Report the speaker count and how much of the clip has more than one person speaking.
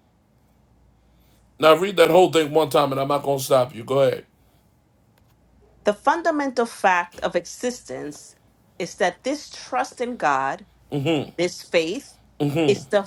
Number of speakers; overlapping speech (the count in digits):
2, no overlap